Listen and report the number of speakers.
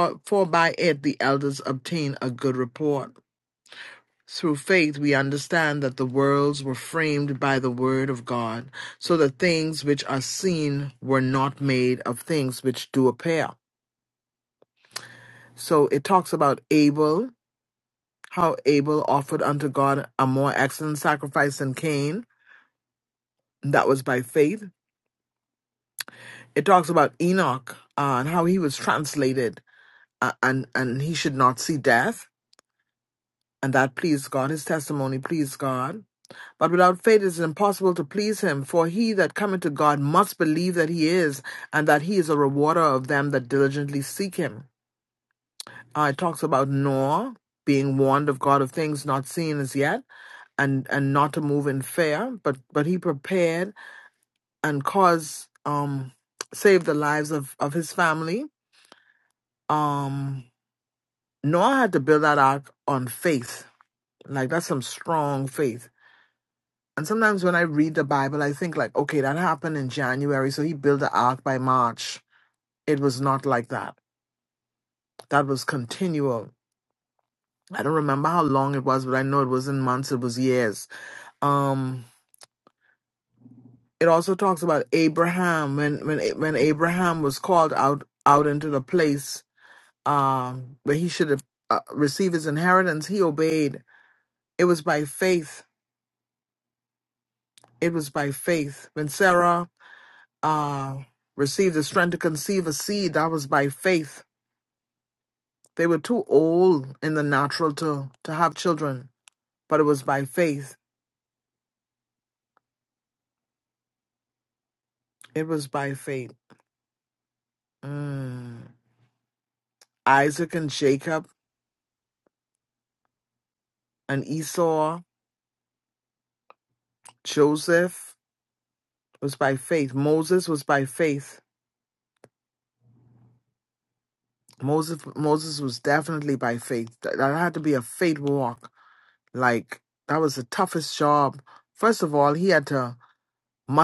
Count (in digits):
1